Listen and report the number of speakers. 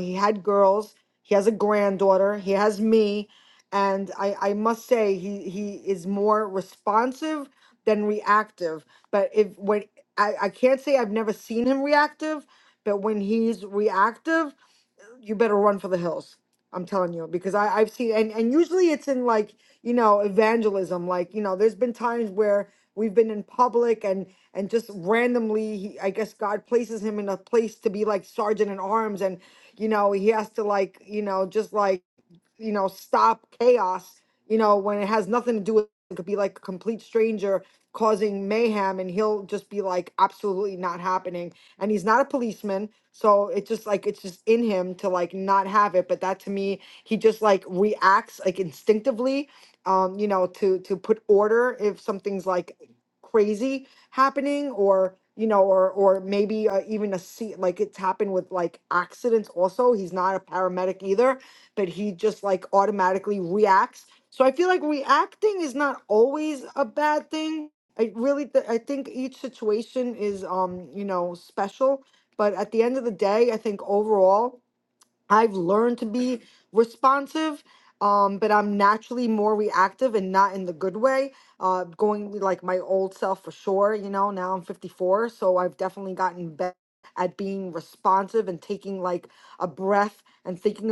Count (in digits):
1